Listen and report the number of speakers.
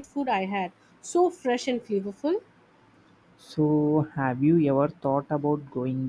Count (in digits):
2